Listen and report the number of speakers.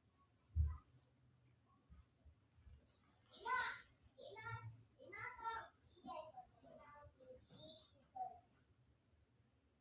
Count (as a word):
zero